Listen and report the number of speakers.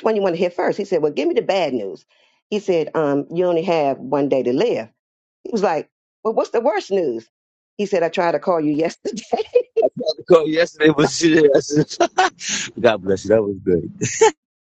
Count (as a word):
two